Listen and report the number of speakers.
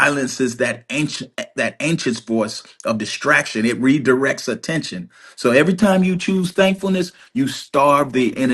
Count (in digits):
1